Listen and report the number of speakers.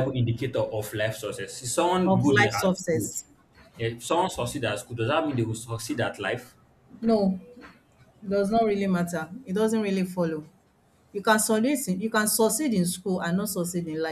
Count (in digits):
2